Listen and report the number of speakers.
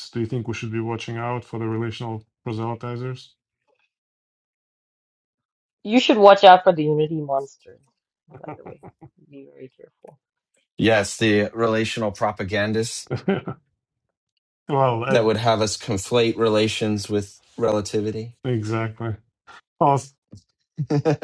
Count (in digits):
3